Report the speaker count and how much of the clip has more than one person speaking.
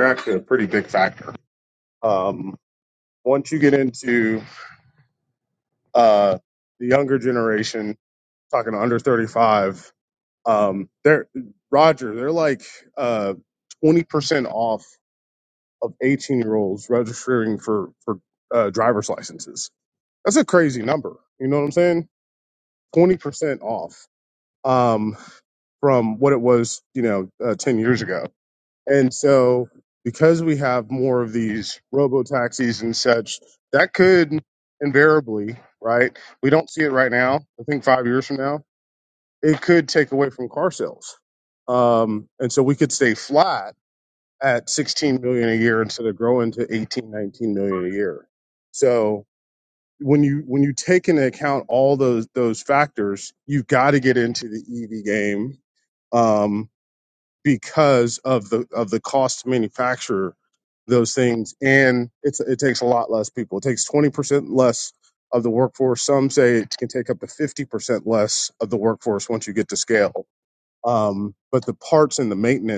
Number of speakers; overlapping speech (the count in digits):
1, no overlap